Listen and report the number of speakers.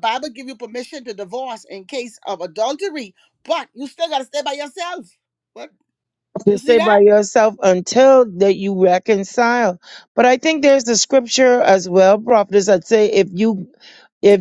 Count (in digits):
2